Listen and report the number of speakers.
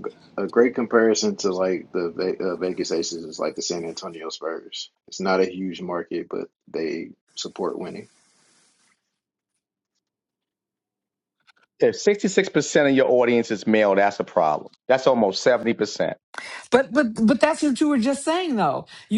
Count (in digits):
3